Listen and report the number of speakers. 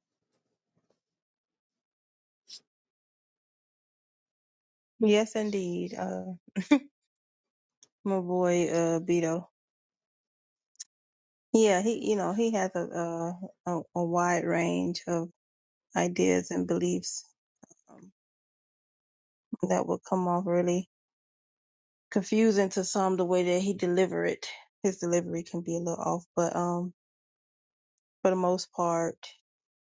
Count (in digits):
1